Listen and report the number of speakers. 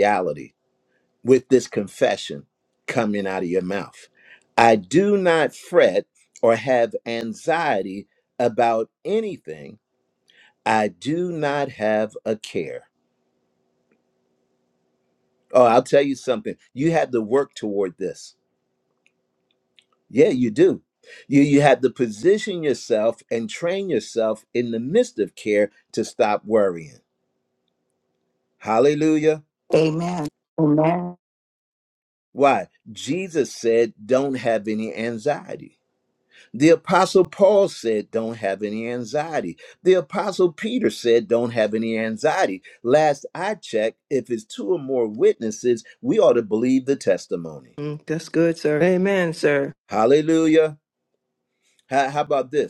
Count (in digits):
3